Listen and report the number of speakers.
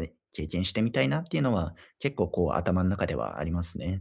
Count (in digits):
1